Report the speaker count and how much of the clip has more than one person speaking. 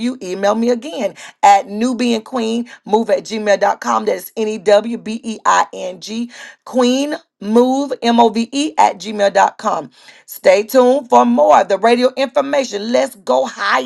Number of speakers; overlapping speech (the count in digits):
1, no overlap